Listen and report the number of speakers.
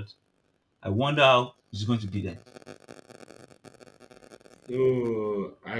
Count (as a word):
two